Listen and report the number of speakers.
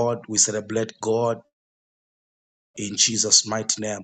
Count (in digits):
1